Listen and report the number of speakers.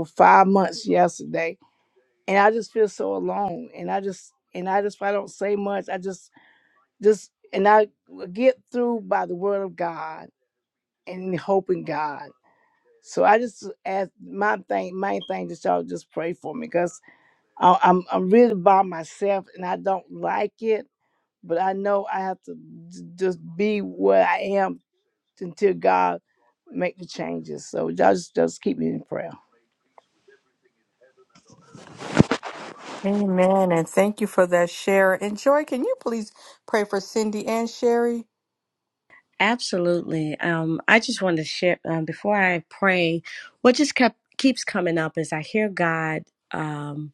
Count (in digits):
3